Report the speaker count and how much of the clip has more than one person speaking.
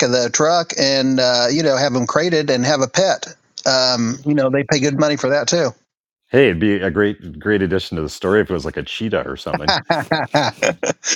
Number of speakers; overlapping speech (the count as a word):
two, no overlap